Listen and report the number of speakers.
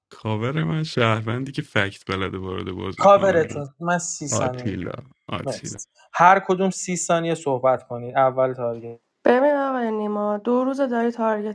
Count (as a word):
three